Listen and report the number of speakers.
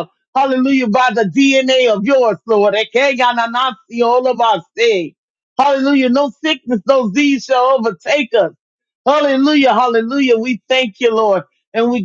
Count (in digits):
1